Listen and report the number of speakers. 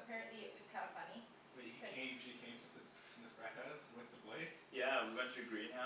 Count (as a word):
three